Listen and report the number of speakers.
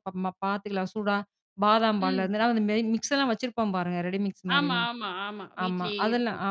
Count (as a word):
two